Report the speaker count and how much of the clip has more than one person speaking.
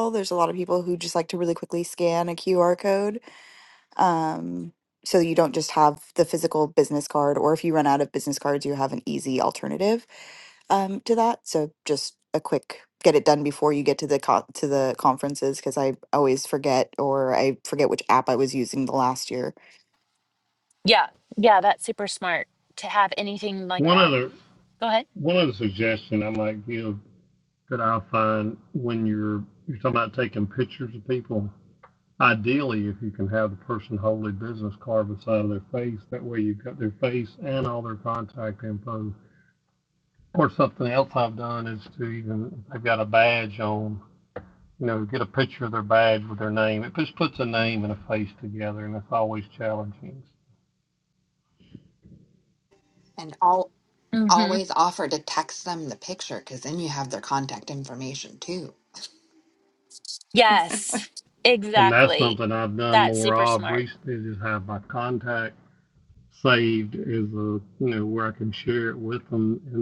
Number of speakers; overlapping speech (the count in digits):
4, about 3%